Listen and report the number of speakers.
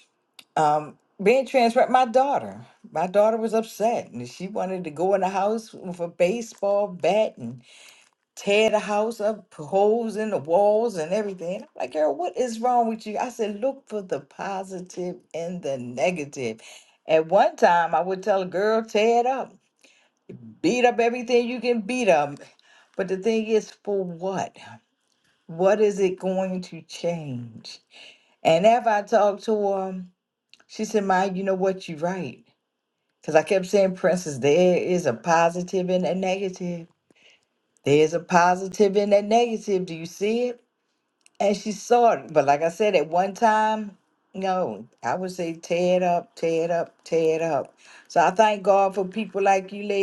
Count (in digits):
1